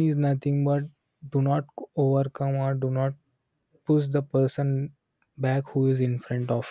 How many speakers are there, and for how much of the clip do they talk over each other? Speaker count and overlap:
one, no overlap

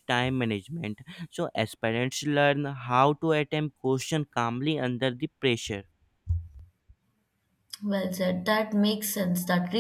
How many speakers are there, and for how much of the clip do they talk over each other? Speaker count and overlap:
two, no overlap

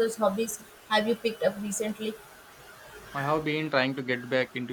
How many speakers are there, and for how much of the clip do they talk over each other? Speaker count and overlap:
two, no overlap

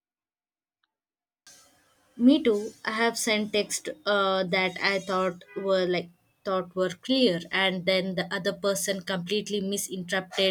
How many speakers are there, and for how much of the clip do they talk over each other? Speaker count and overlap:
one, no overlap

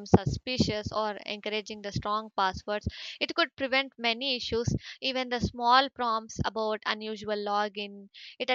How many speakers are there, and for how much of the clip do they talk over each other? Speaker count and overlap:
one, no overlap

